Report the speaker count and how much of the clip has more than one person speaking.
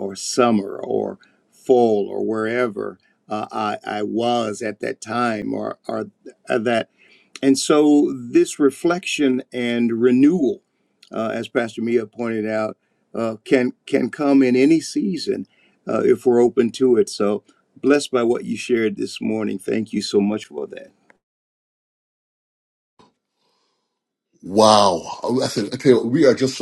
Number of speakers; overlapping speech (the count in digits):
2, no overlap